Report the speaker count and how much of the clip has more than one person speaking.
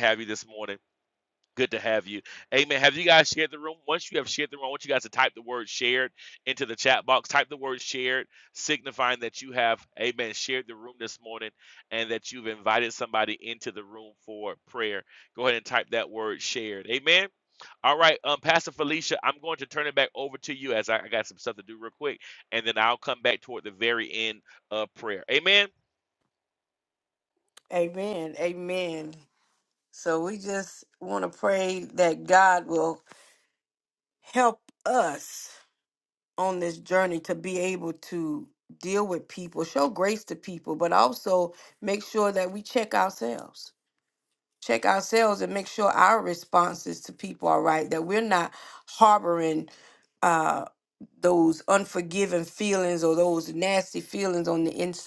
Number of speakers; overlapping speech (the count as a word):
two, no overlap